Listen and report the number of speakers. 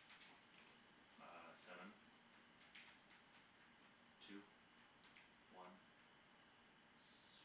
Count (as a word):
one